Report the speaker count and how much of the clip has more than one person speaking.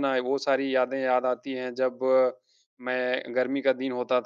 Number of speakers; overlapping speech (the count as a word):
one, no overlap